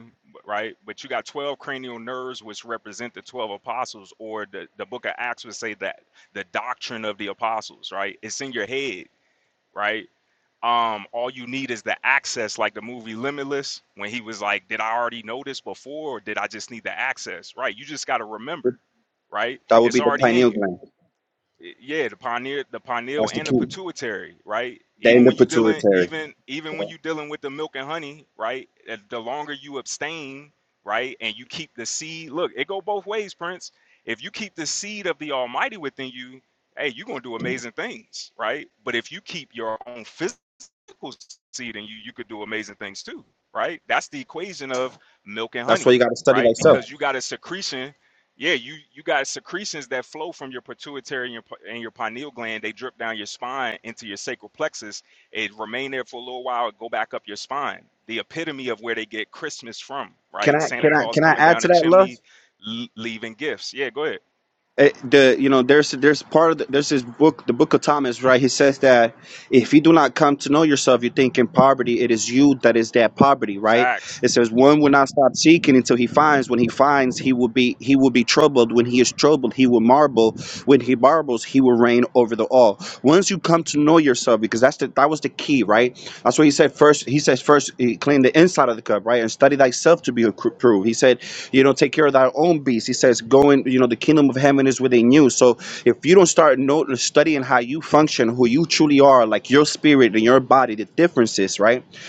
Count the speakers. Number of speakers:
two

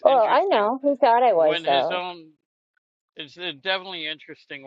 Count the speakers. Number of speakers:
two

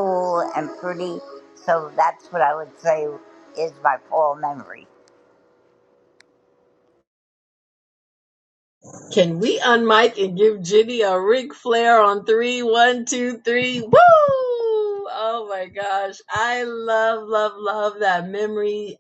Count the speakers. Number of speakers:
two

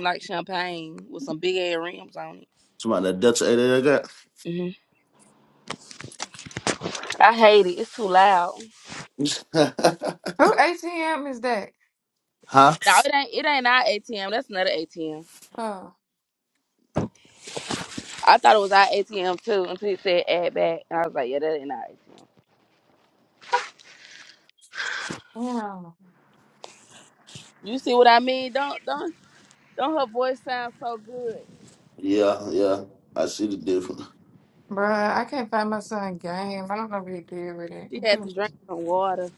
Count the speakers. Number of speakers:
three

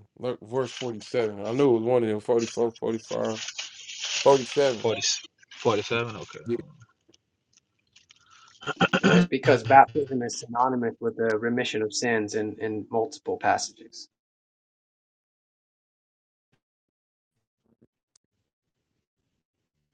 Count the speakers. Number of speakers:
three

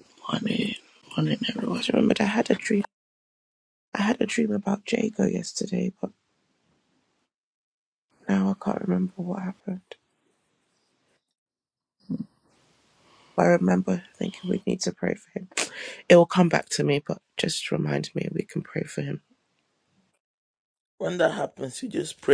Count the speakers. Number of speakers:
three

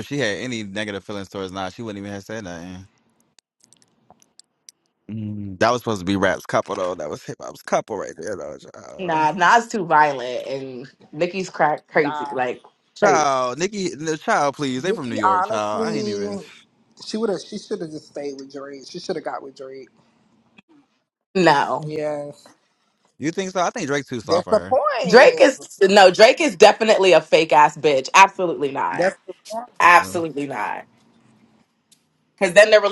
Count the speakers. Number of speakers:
three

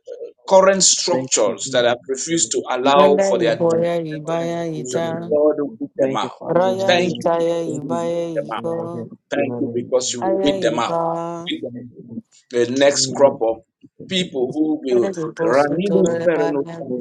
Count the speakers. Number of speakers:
three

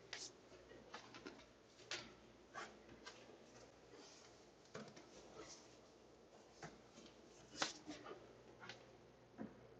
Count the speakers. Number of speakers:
zero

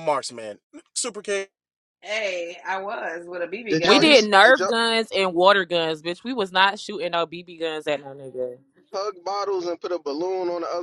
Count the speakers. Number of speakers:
four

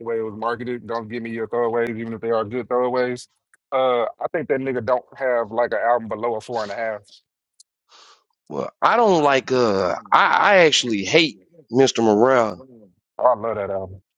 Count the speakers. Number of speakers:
two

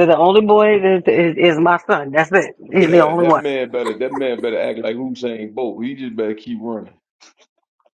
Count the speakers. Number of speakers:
two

